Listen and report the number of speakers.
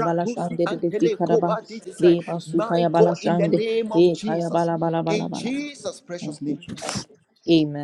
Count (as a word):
two